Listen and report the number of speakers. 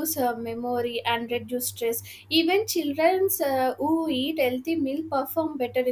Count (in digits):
1